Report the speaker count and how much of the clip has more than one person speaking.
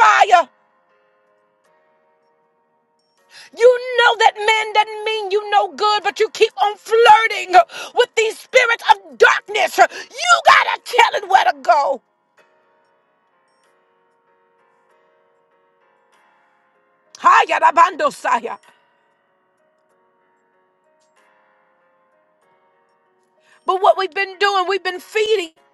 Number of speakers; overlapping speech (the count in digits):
1, no overlap